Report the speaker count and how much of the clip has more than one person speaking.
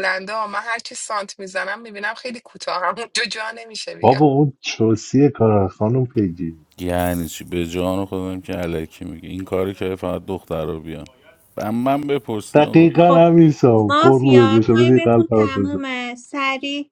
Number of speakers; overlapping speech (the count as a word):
four, about 17%